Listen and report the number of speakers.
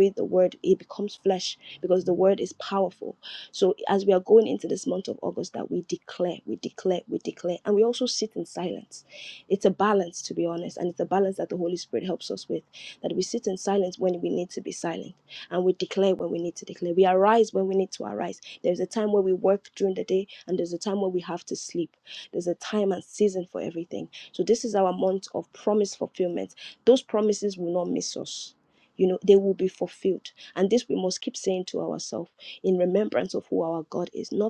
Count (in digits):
1